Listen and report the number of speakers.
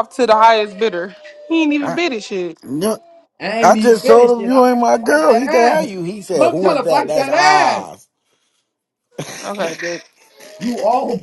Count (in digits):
3